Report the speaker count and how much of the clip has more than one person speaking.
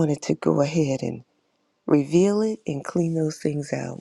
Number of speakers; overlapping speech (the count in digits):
1, no overlap